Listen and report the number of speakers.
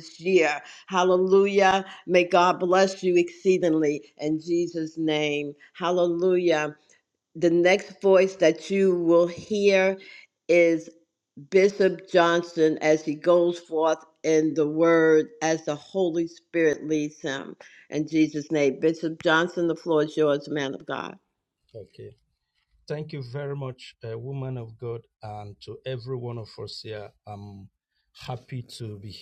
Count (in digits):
2